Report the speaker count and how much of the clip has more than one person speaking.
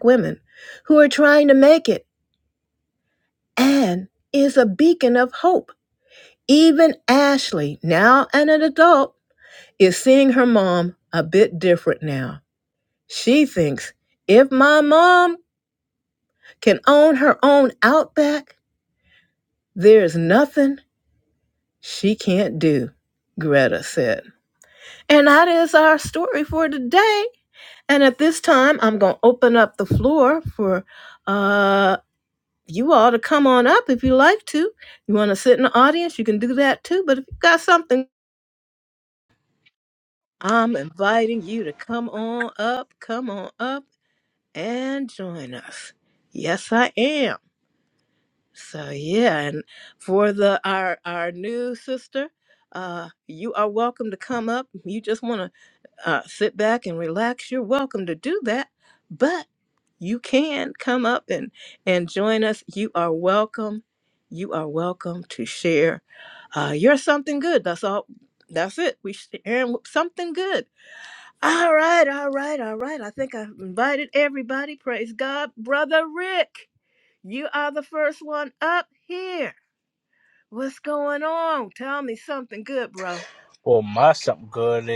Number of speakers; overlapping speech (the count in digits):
2, no overlap